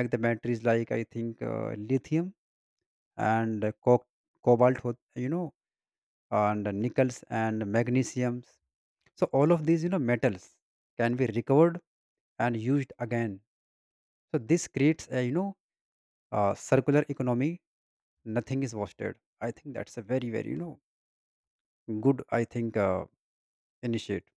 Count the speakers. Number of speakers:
one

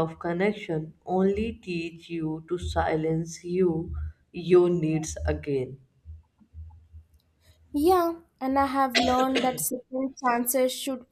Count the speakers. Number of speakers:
two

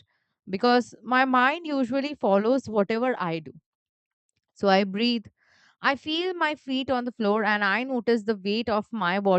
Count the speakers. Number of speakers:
one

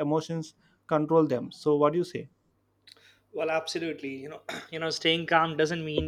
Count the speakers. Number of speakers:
two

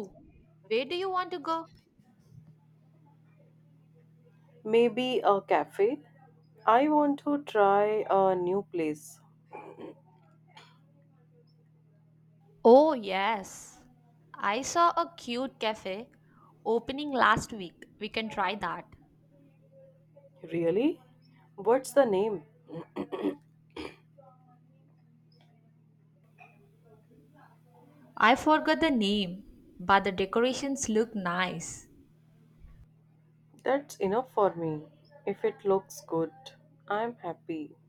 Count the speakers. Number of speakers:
two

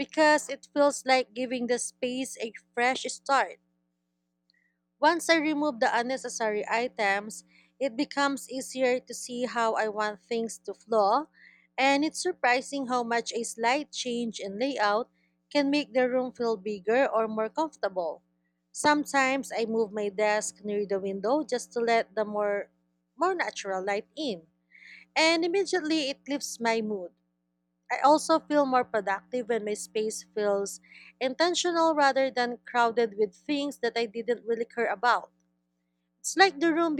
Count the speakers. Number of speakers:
one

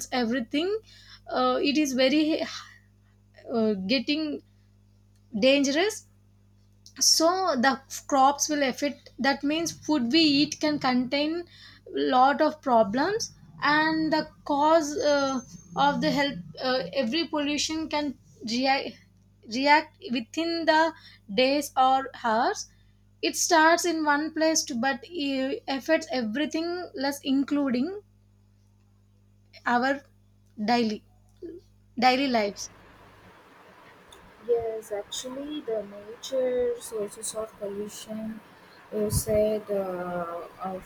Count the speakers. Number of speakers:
two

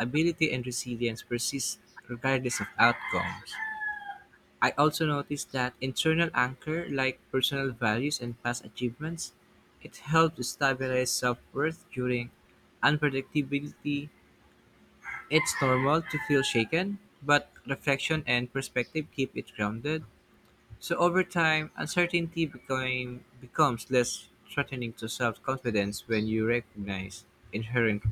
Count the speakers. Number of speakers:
one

